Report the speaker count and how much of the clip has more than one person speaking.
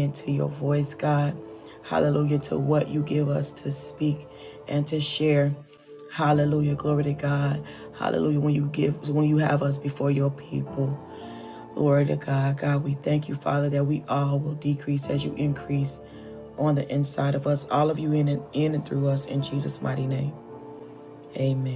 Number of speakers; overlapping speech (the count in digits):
1, no overlap